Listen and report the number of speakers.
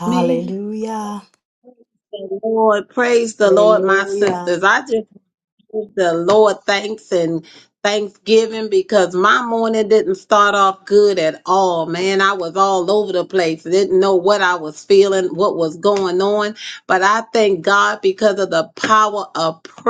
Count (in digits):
2